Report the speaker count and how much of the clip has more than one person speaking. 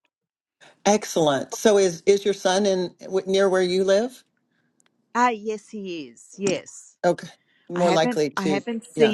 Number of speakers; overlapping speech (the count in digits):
2, about 12%